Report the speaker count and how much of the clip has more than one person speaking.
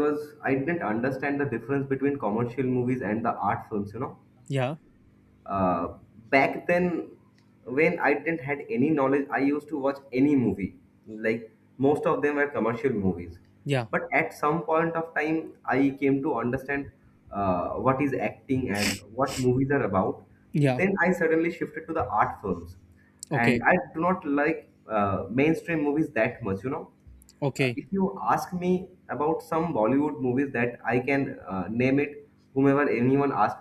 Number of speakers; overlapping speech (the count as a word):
two, about 1%